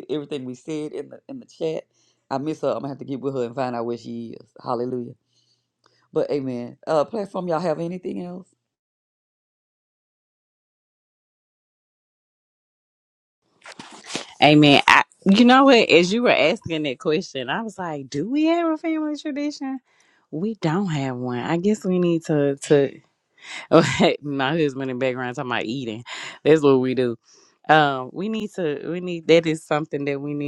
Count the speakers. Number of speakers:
2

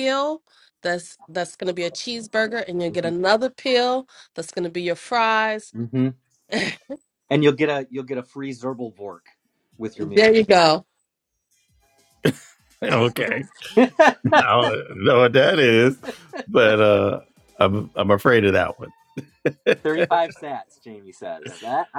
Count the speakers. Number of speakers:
3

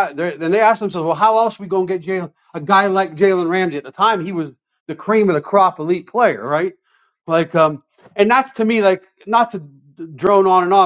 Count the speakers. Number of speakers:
1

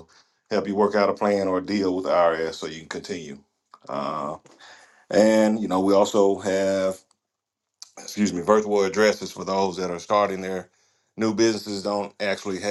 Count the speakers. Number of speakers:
1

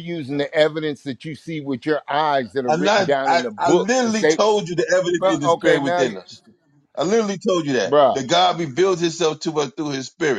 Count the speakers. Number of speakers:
2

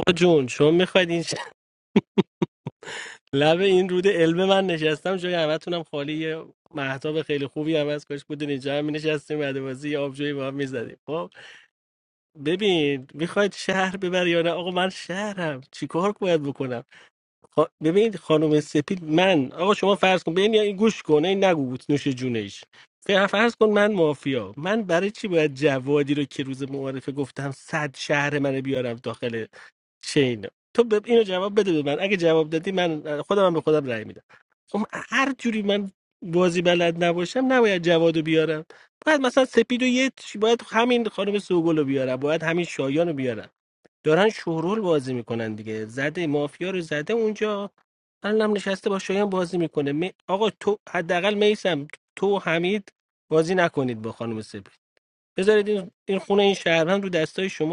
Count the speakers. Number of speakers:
1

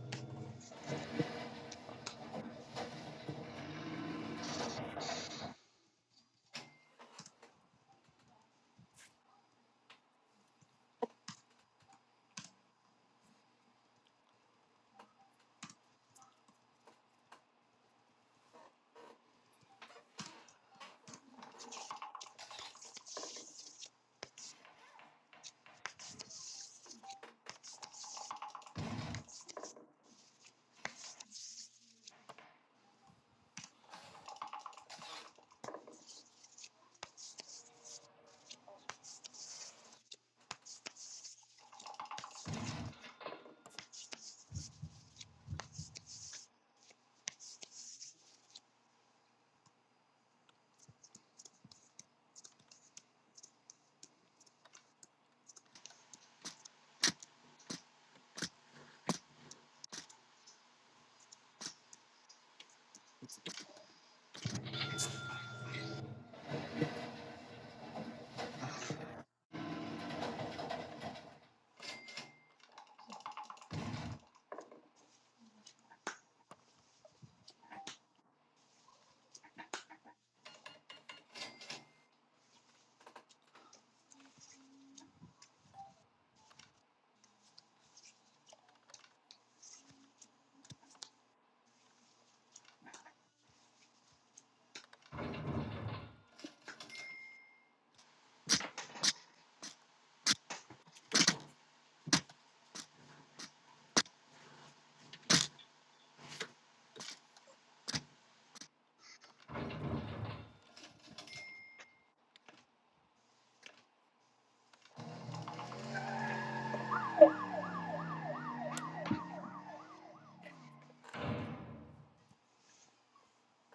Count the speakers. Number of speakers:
0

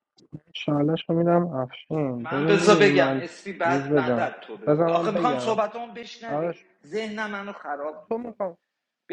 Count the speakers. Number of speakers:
2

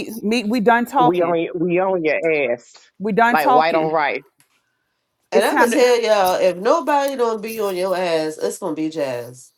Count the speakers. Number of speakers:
3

